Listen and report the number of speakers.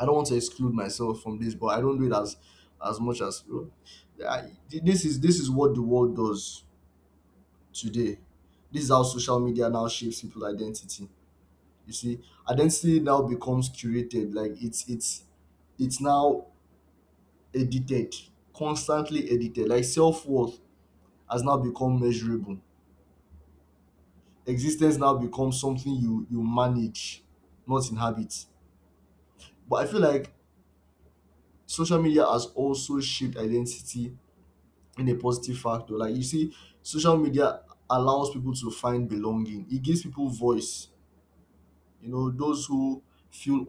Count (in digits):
1